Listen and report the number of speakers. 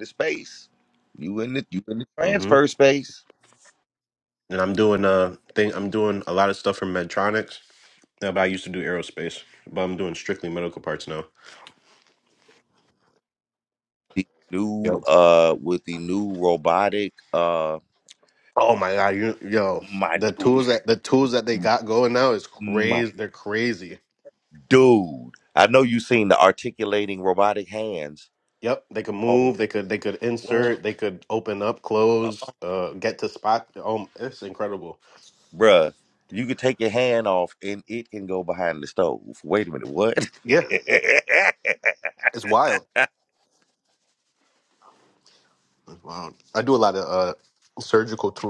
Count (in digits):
2